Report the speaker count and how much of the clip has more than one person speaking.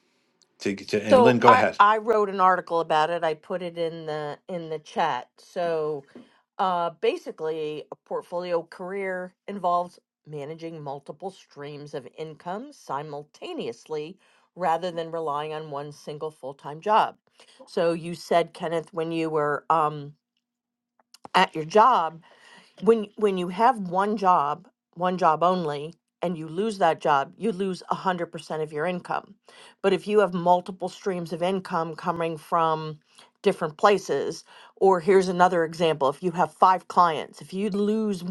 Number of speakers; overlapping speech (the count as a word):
two, about 2%